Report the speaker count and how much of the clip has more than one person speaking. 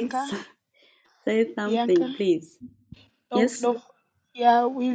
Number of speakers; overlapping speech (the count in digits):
2, about 21%